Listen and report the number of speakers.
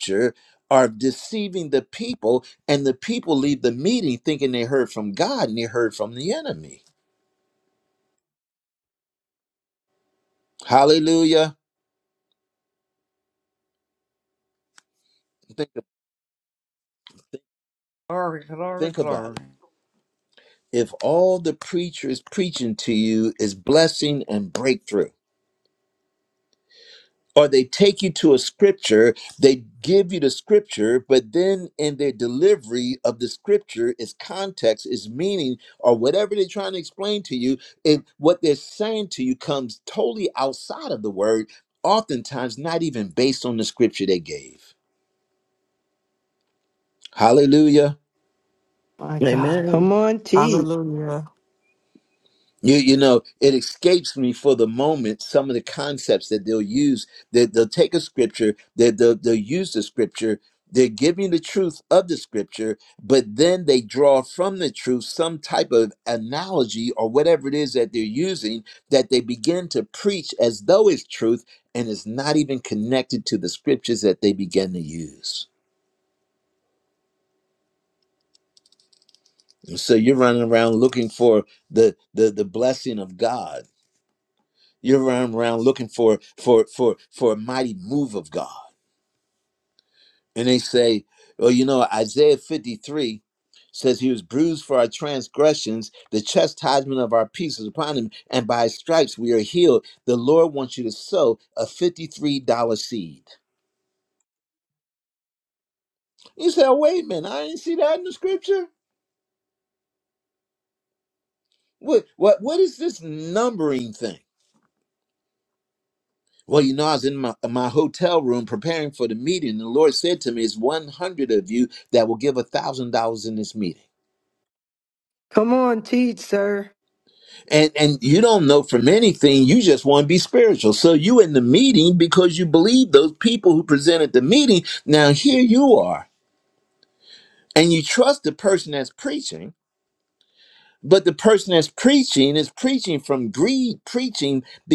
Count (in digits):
4